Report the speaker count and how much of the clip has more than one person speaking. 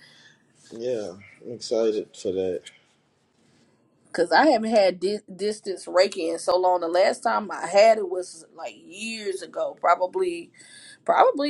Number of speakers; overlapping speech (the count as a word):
two, no overlap